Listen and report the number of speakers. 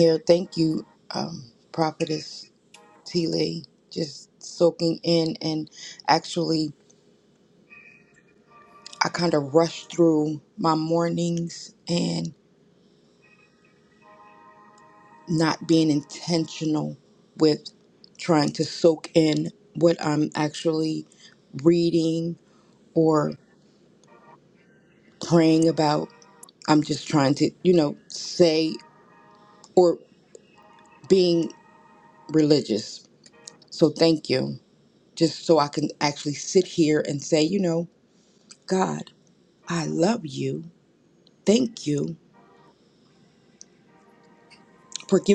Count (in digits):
1